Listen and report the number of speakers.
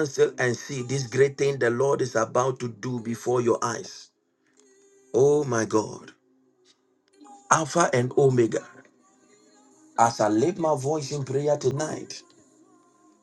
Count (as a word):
one